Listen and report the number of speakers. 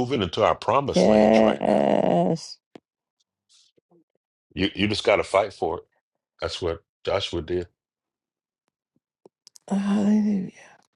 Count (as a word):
two